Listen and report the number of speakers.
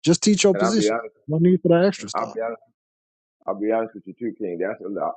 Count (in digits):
2